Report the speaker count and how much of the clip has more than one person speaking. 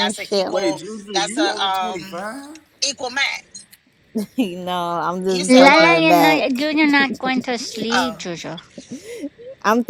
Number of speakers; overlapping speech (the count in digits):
4, about 32%